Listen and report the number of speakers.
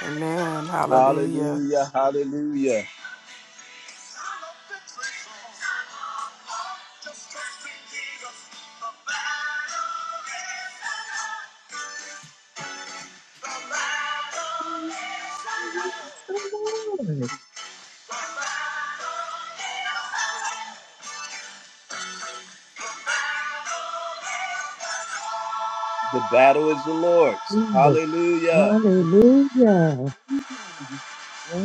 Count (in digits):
3